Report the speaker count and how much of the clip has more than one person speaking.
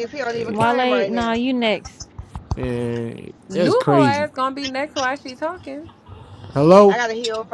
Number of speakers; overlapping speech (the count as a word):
four, about 23%